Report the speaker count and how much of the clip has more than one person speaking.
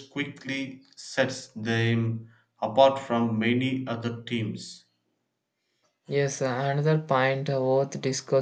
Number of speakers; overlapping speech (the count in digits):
2, no overlap